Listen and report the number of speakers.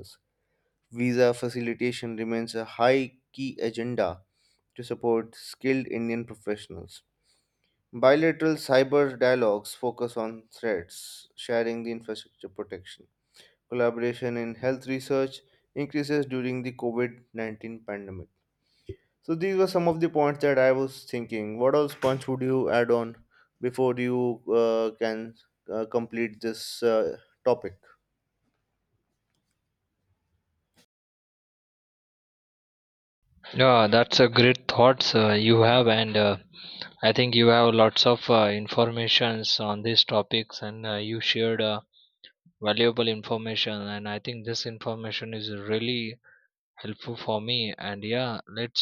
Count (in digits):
2